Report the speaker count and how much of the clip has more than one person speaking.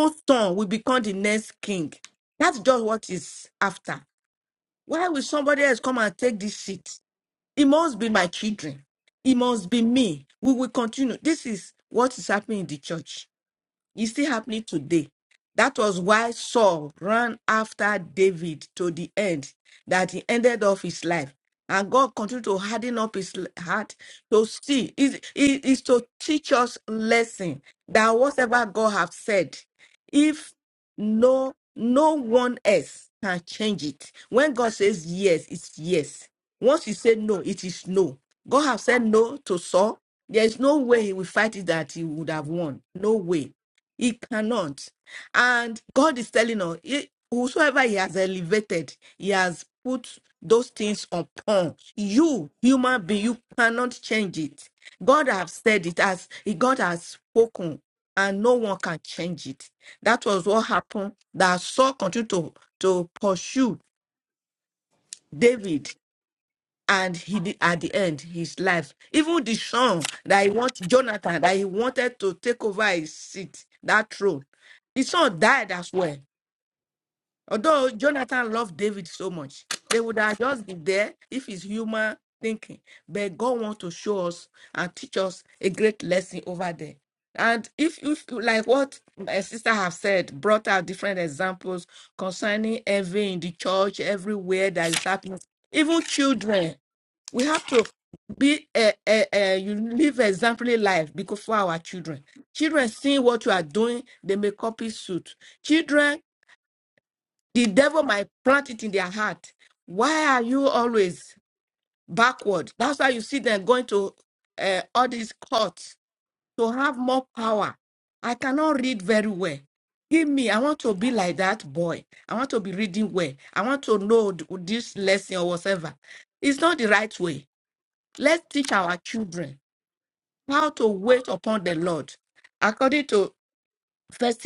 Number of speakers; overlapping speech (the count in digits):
1, no overlap